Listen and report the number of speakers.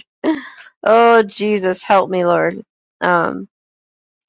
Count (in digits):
1